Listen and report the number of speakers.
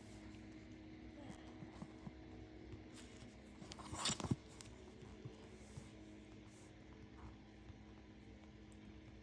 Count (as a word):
zero